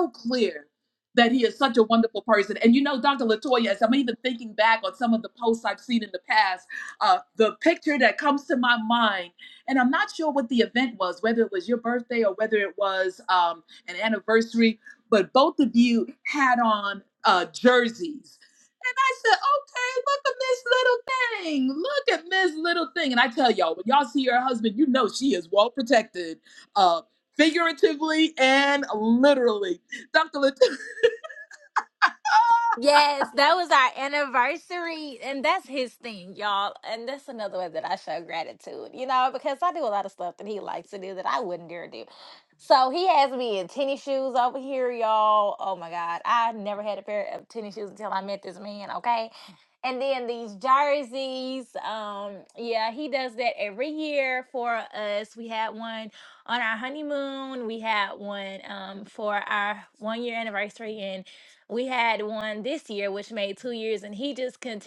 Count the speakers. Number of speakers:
two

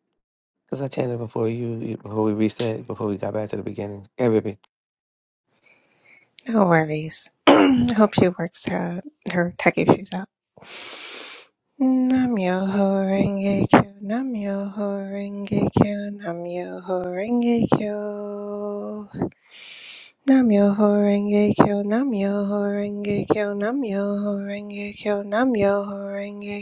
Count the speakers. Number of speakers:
two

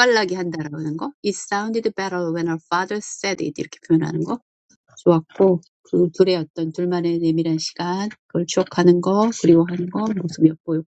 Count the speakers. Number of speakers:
one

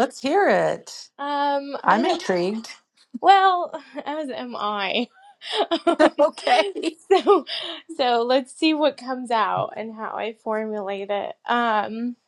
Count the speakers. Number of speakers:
two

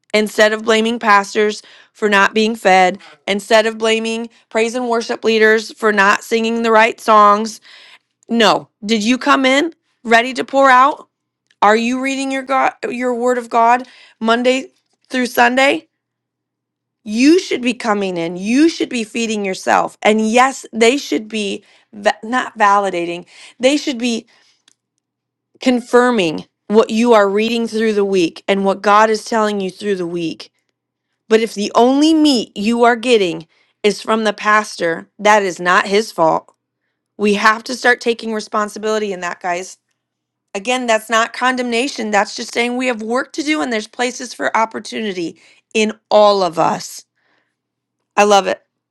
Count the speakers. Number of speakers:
one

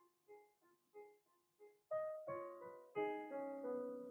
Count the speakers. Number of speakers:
zero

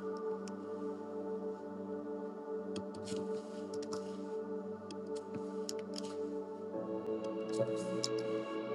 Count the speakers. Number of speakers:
zero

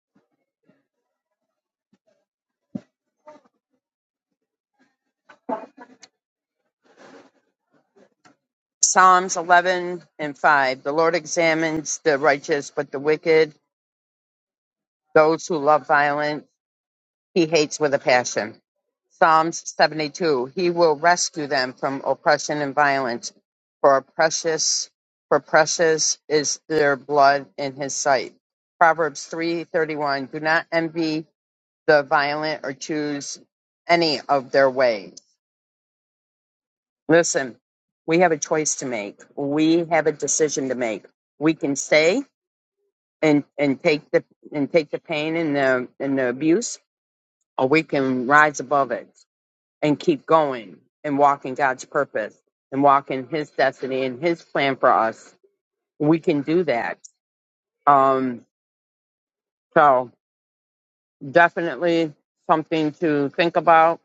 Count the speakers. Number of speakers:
one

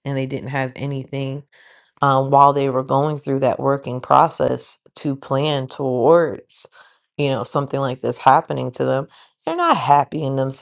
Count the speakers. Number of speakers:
one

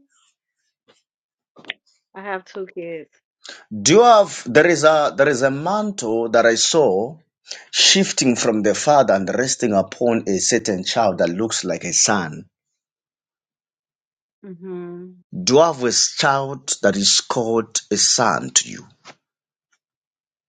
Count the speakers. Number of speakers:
two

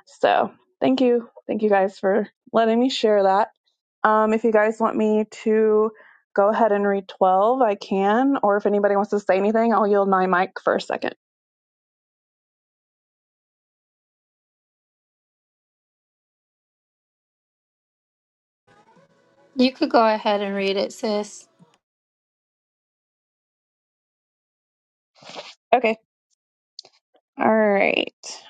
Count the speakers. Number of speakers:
two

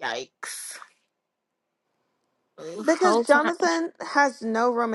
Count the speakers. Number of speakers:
two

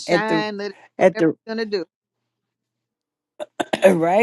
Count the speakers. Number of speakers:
two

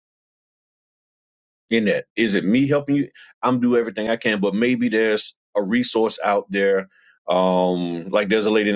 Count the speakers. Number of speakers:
one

